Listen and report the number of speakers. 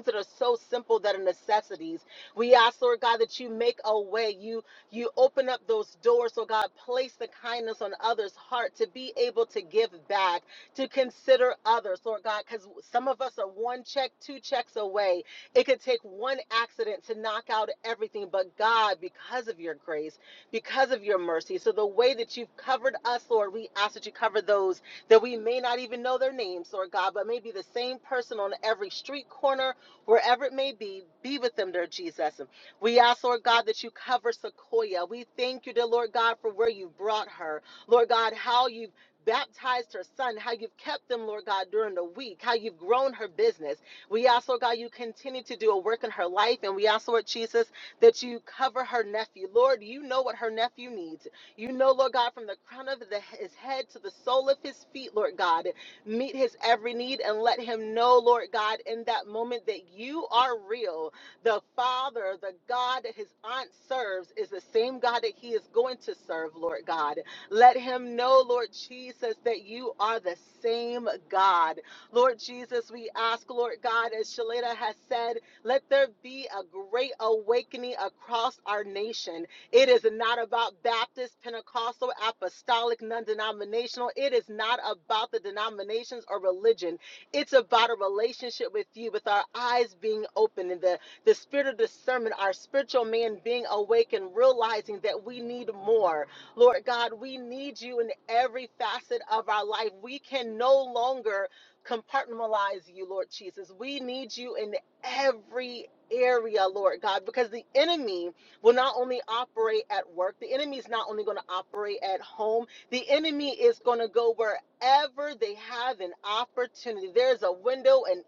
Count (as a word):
one